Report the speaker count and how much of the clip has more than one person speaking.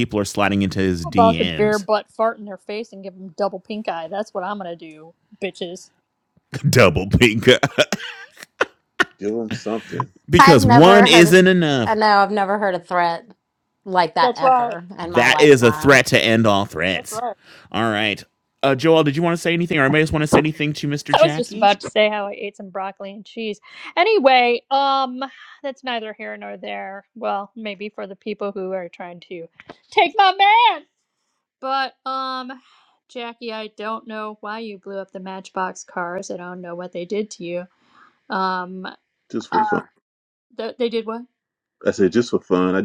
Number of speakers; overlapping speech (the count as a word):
four, about 9%